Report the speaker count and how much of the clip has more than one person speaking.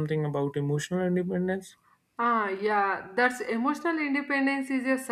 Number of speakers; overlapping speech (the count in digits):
2, no overlap